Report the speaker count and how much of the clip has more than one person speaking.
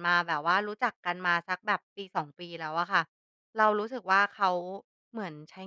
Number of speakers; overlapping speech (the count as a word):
one, no overlap